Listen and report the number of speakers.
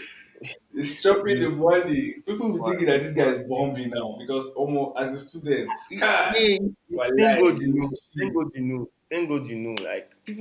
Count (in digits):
2